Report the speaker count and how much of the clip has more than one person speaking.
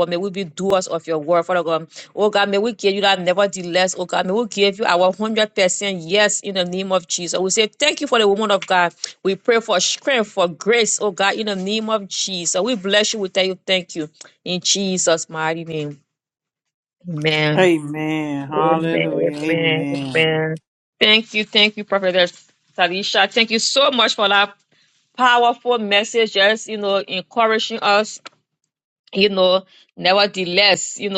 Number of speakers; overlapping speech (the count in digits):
2, about 6%